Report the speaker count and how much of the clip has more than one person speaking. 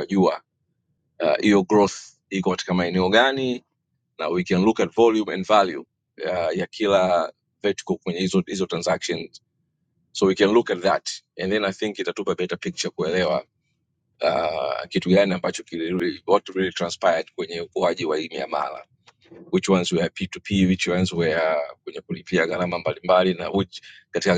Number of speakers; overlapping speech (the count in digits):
1, no overlap